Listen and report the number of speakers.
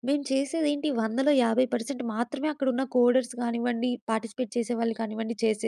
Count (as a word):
one